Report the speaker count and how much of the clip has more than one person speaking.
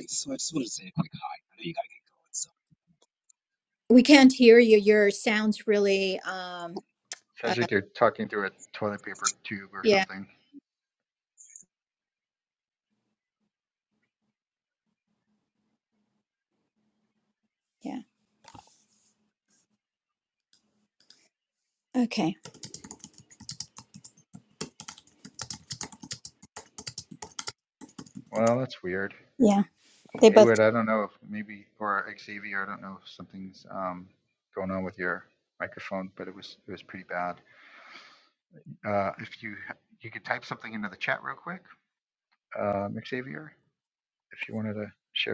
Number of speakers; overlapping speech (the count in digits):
3, about 1%